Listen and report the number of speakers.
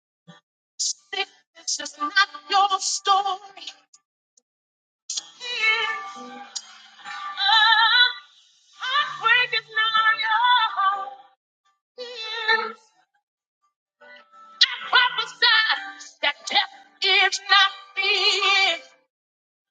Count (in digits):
1